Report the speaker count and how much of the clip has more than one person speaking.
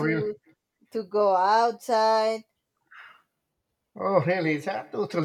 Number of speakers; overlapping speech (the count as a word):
two, about 6%